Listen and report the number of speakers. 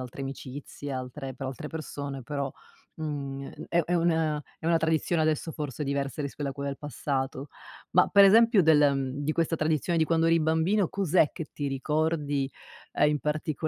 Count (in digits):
1